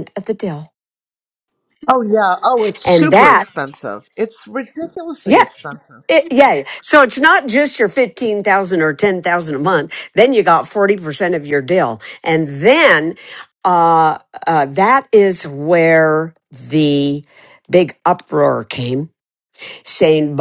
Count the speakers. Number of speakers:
2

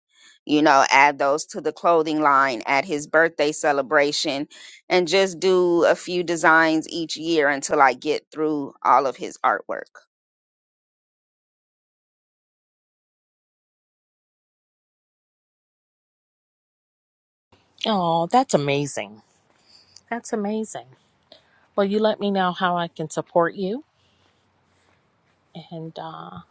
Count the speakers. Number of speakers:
2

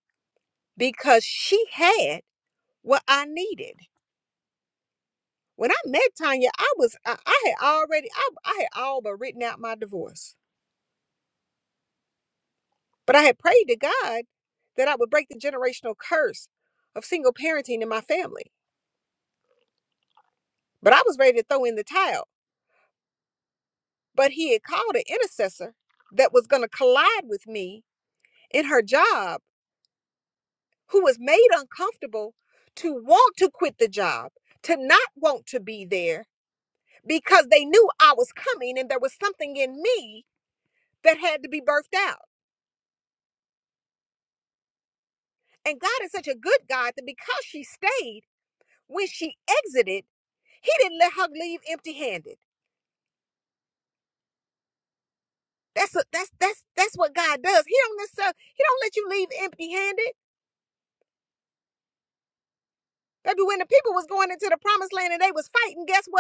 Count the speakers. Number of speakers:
1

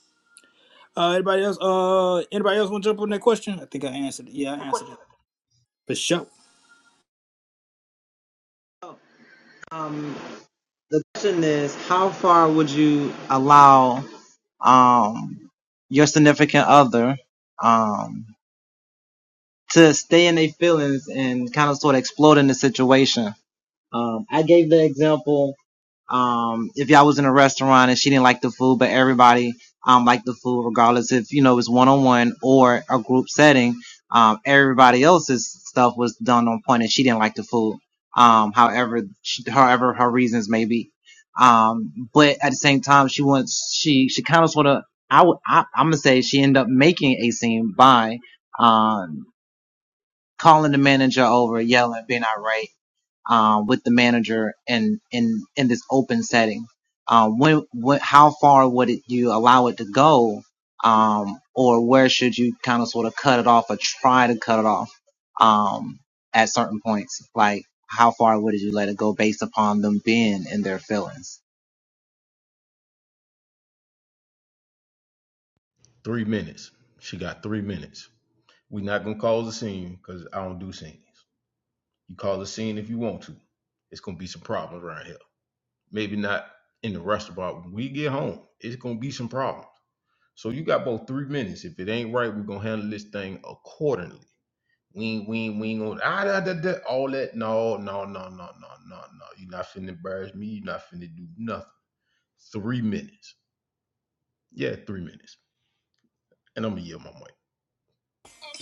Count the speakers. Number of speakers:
3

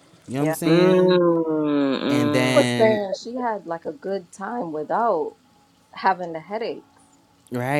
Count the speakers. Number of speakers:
3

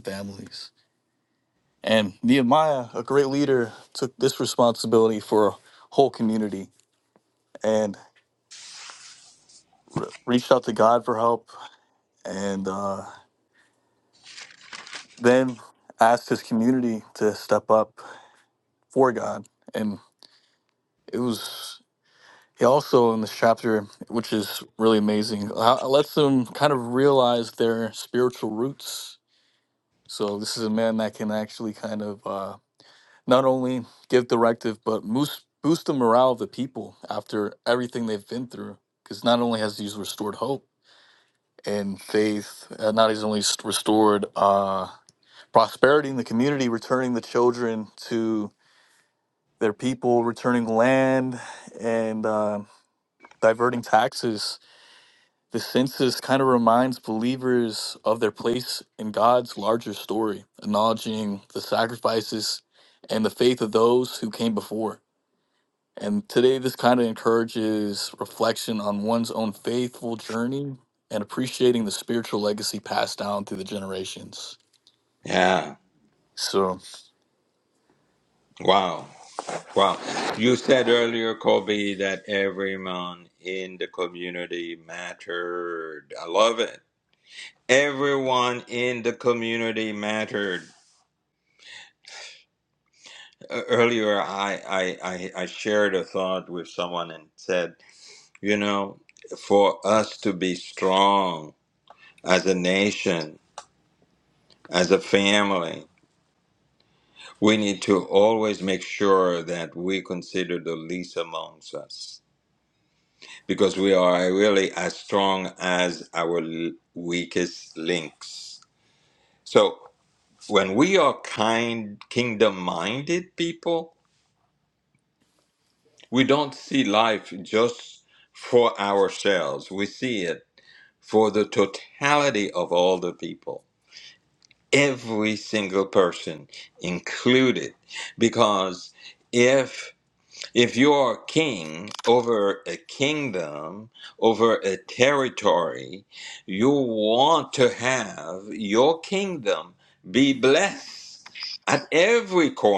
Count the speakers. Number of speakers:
2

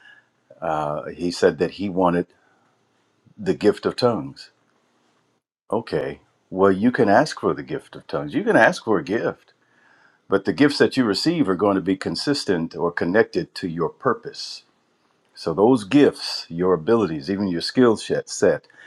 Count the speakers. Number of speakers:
1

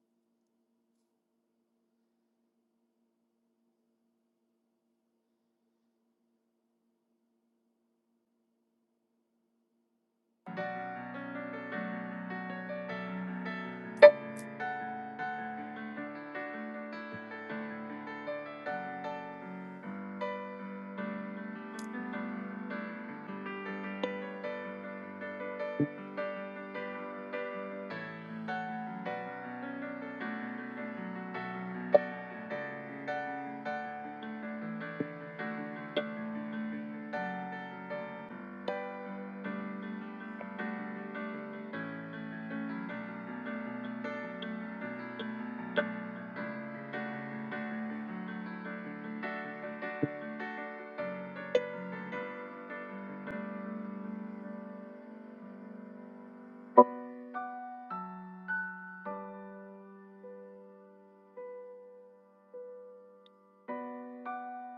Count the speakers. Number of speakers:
0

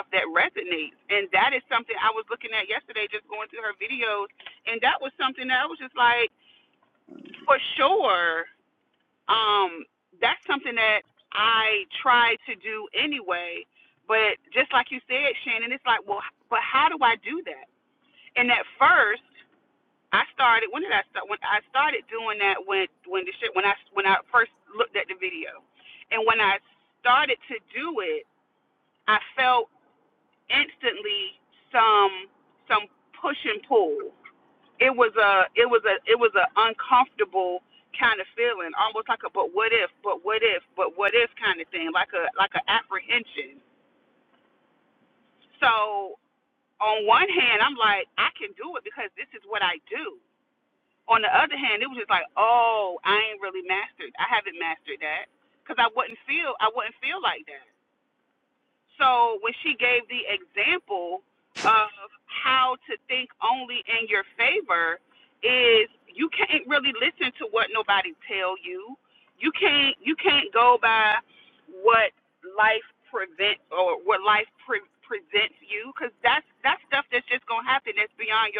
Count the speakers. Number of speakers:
1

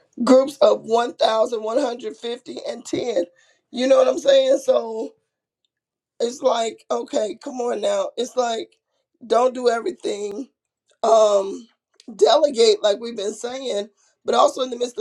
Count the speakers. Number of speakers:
1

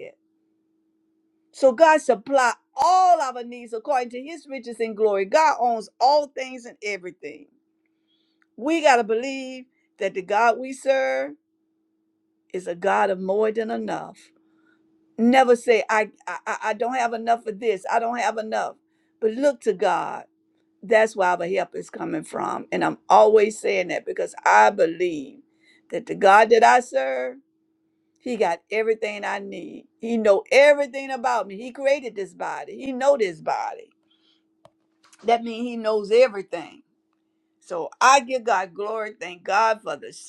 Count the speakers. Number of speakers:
1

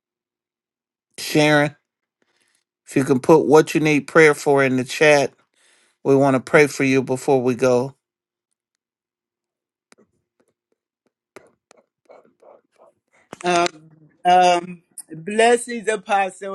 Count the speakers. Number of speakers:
2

